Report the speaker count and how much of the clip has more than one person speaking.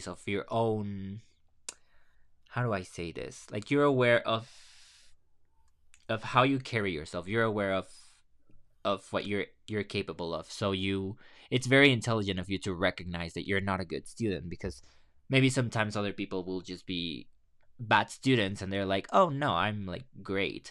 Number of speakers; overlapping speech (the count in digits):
1, no overlap